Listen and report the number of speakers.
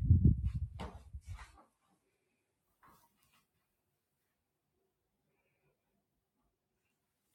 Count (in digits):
0